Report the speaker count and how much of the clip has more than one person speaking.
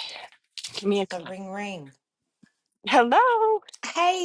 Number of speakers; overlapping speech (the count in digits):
2, no overlap